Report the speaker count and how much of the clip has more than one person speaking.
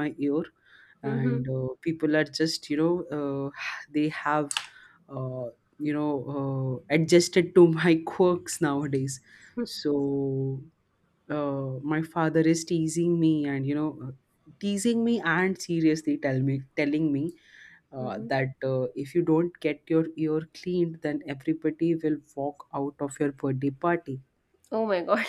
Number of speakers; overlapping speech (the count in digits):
2, about 3%